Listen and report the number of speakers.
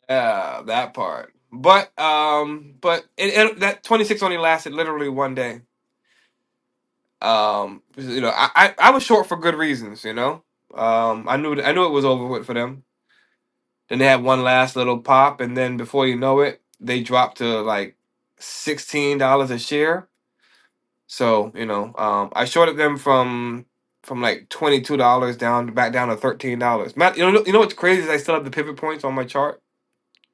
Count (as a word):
one